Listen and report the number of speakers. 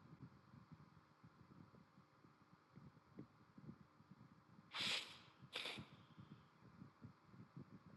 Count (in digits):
0